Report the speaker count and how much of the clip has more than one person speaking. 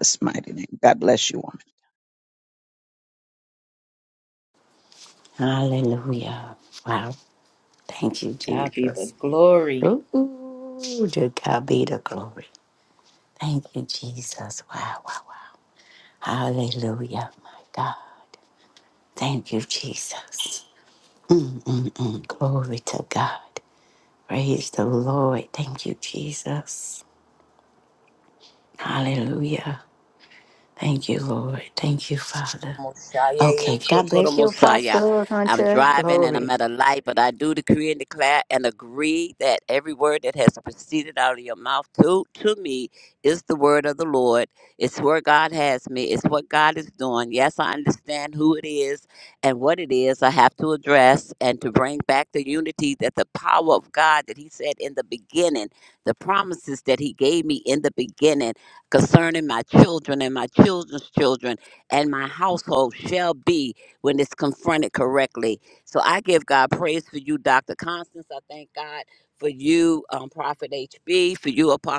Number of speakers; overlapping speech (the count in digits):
4, about 5%